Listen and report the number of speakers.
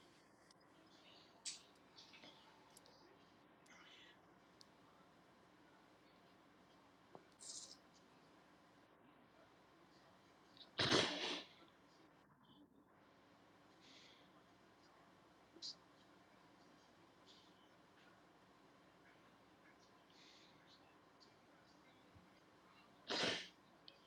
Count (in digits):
0